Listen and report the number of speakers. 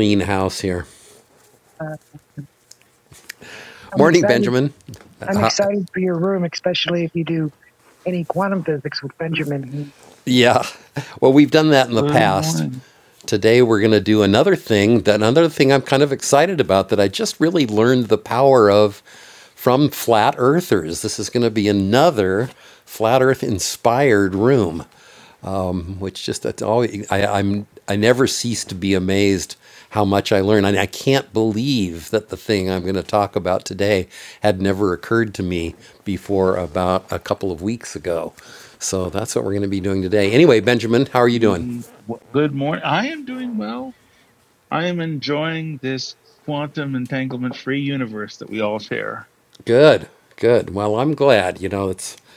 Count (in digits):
3